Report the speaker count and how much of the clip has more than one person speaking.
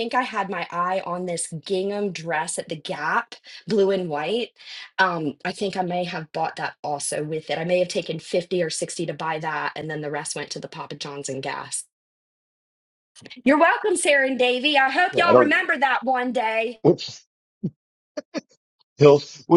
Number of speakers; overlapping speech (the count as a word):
two, about 2%